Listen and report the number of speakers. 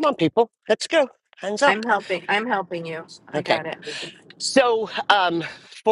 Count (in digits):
2